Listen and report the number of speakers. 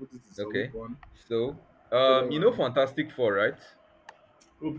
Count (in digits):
2